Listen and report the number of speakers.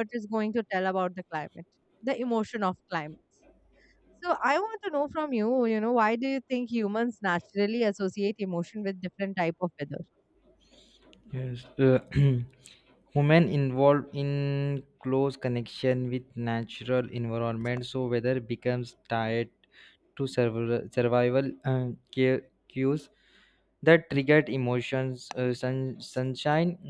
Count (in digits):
2